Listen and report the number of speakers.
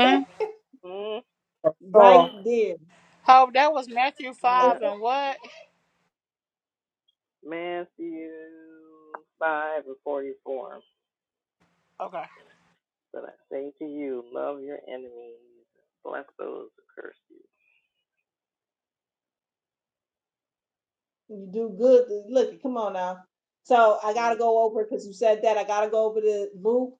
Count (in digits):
3